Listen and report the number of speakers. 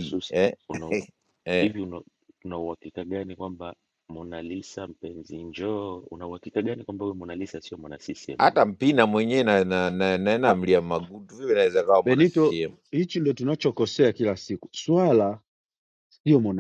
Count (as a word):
three